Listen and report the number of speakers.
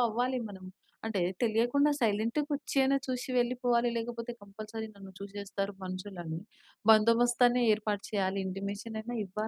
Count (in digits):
1